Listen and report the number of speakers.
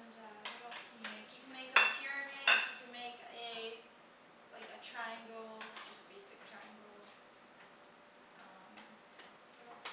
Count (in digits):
1